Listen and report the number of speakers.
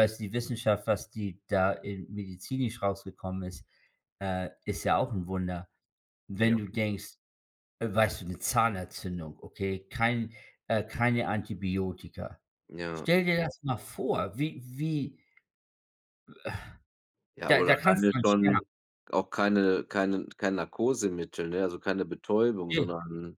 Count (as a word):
two